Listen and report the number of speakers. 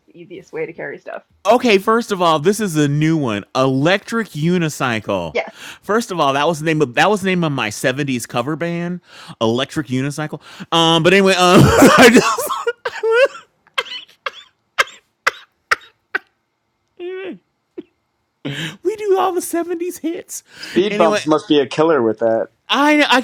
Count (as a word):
three